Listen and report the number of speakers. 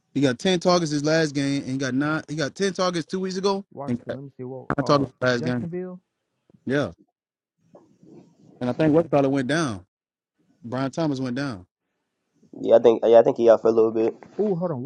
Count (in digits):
3